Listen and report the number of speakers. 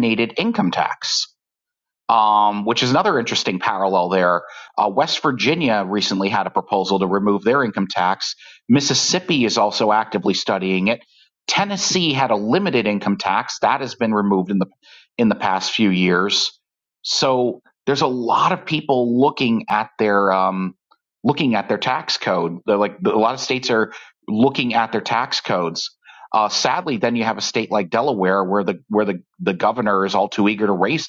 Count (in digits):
1